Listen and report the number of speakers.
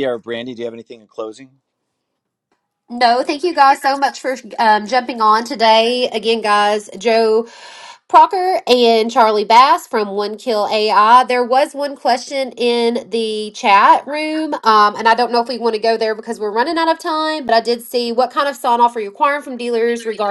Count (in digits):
2